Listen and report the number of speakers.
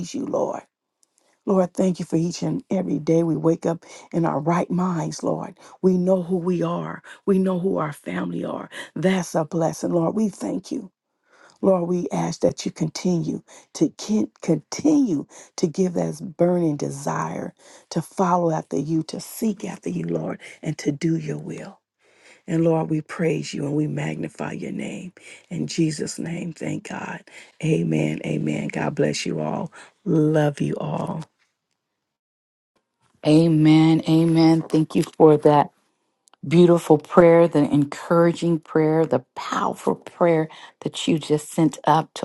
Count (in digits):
2